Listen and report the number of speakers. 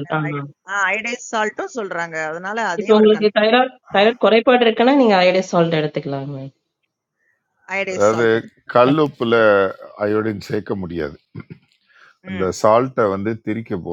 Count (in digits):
3